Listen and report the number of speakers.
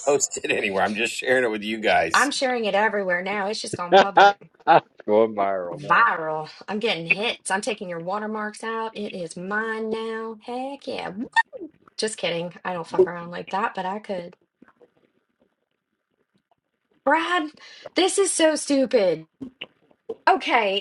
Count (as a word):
three